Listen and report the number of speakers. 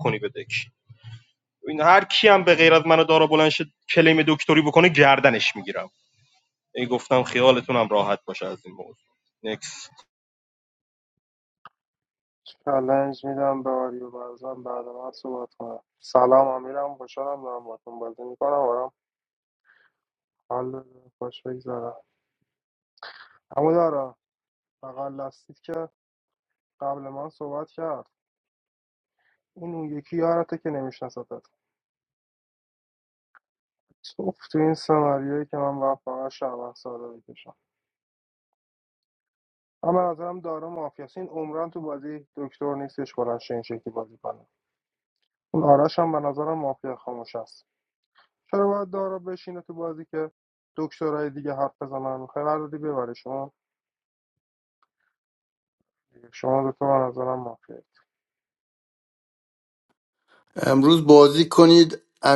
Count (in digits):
3